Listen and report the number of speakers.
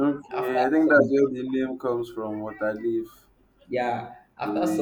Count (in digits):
2